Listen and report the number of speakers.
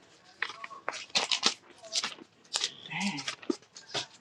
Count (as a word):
zero